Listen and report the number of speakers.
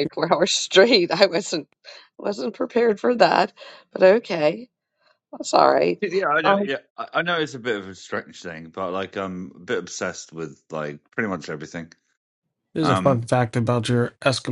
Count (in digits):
3